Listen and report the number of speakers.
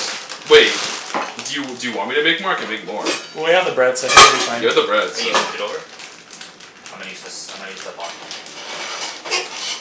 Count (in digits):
3